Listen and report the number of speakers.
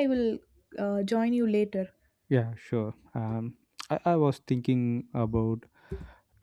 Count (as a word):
two